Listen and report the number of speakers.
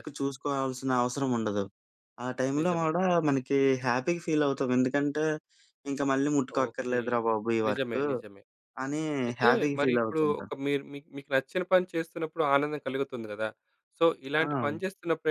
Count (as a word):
two